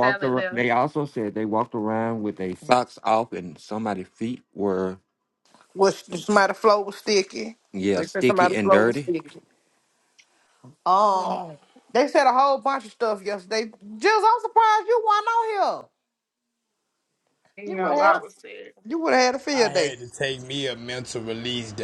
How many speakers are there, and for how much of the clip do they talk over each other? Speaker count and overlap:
four, about 14%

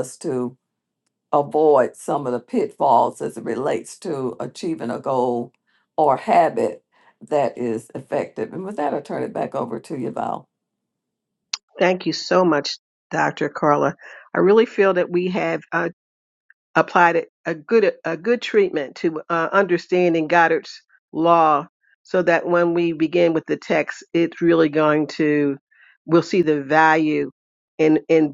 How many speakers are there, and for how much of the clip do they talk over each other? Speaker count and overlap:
two, no overlap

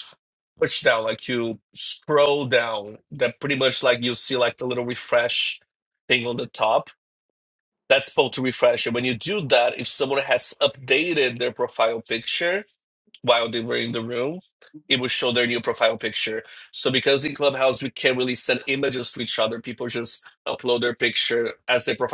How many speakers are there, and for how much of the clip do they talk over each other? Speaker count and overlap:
one, no overlap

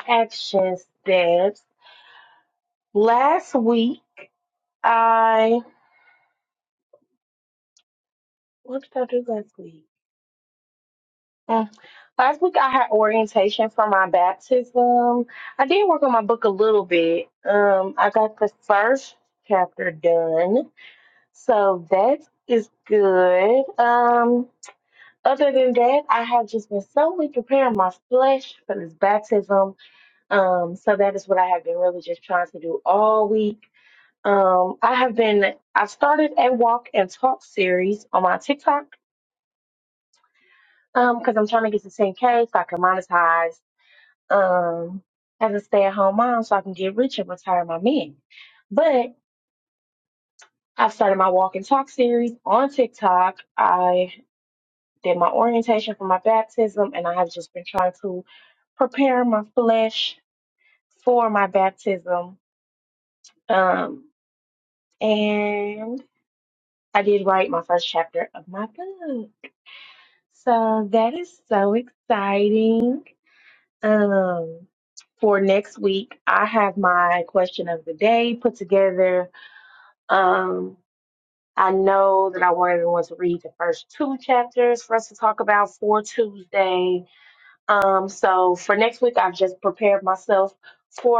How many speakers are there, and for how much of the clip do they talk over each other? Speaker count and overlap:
one, no overlap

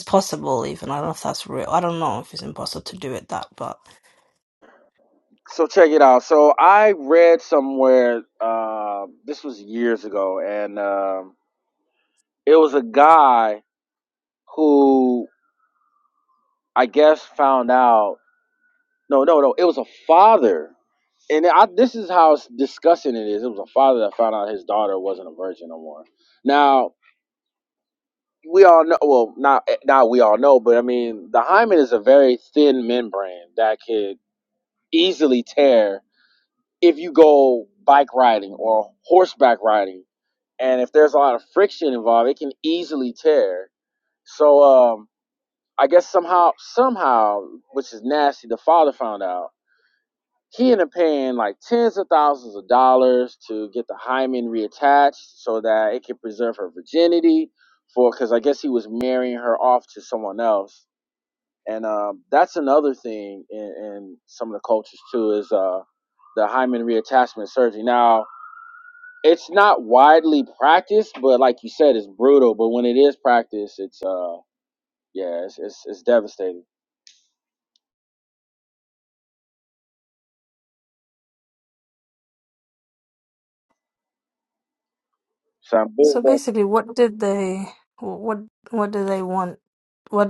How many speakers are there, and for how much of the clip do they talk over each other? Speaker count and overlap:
two, under 1%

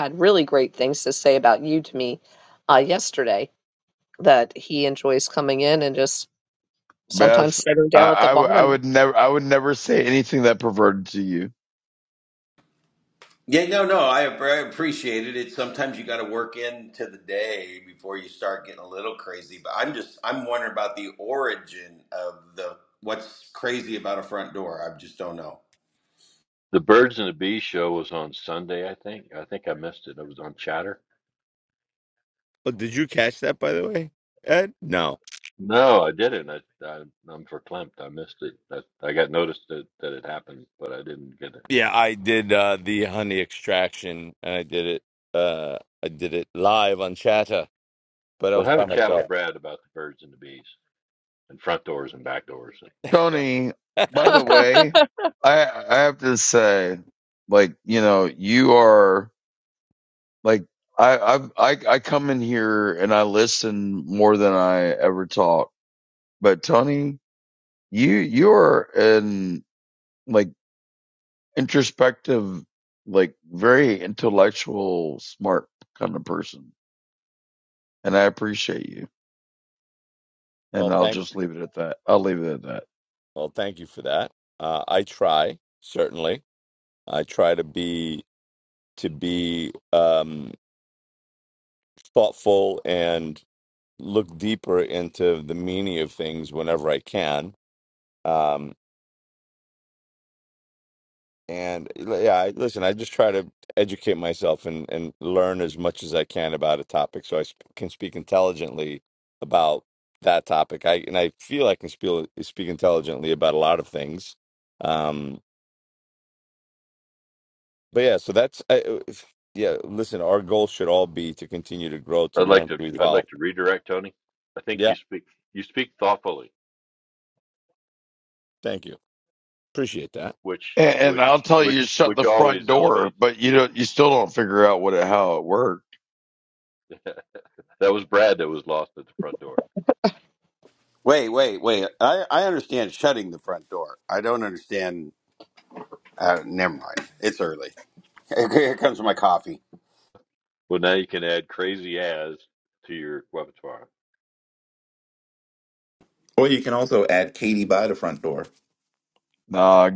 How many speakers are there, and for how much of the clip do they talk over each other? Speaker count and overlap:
six, about 4%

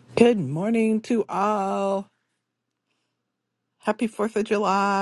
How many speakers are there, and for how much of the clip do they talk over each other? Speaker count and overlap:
one, no overlap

